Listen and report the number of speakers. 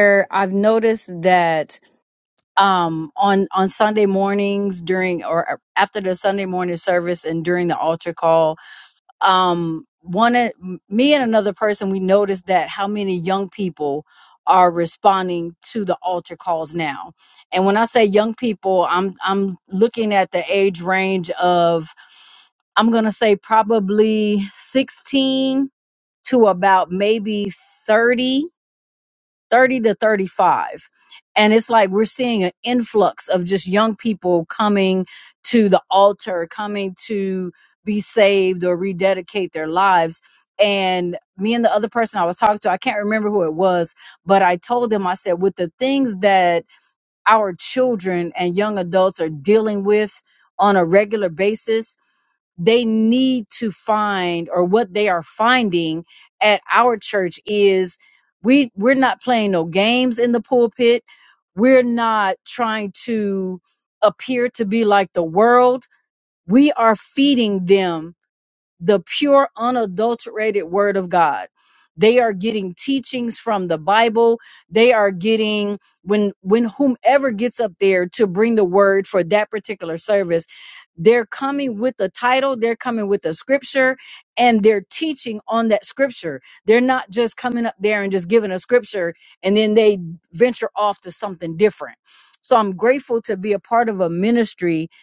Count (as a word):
one